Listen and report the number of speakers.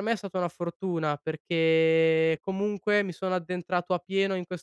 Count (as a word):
one